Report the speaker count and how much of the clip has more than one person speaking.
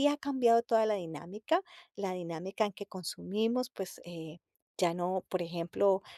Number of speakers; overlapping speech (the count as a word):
one, no overlap